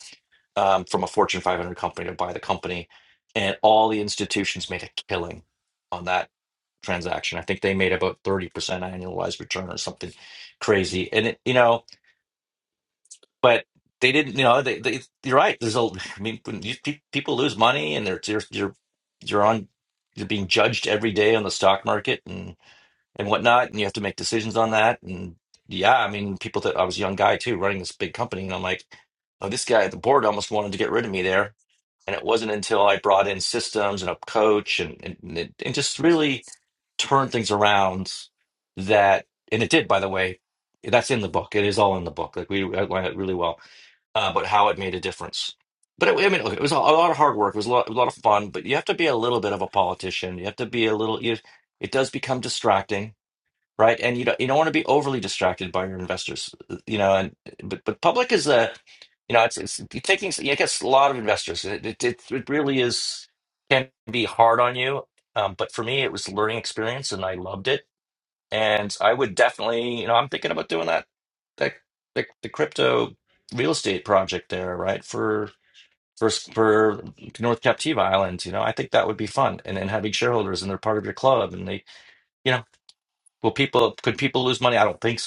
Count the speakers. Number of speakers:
1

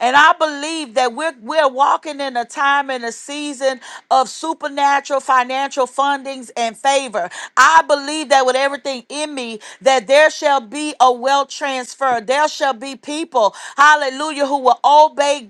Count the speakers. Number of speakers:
1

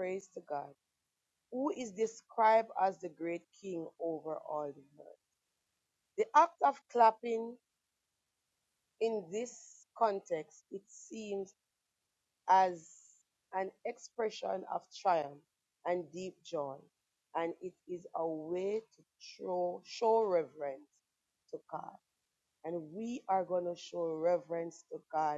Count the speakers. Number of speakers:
1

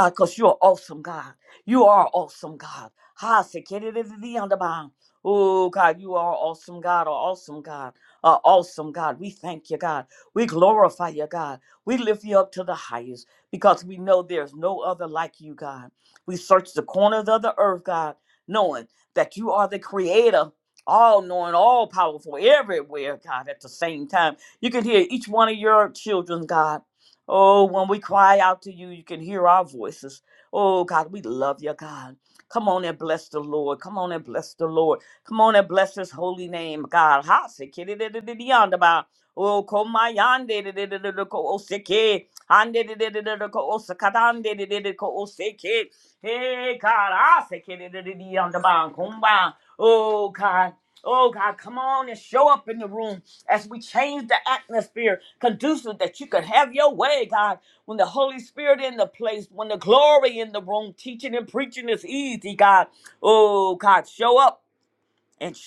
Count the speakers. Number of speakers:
1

